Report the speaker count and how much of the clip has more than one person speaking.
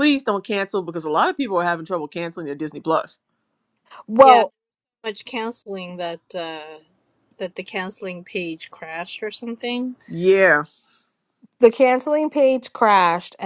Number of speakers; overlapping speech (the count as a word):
three, about 2%